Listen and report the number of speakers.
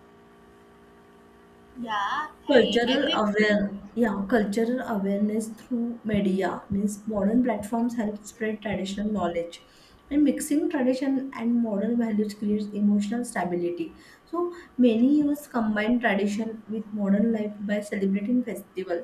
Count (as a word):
two